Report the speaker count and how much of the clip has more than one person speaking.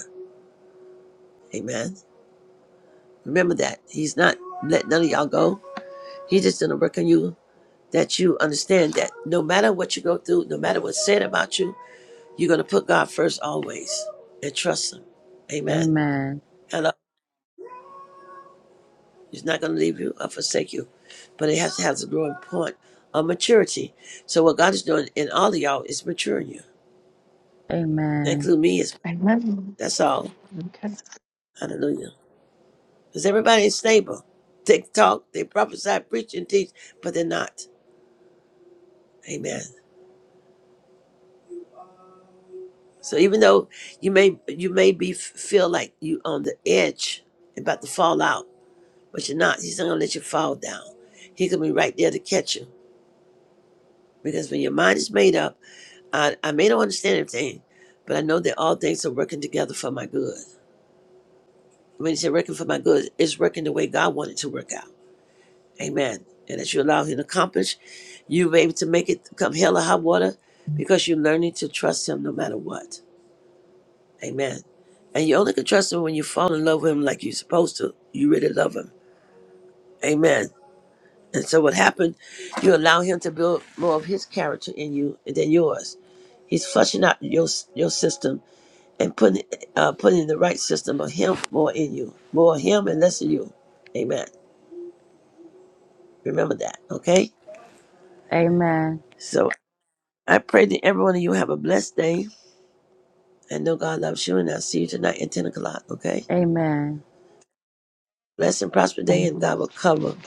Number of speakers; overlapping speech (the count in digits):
3, about 1%